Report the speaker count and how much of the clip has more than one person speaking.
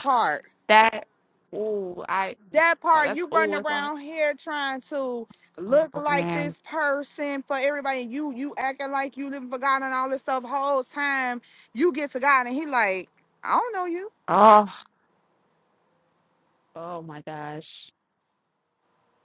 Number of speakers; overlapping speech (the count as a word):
two, about 9%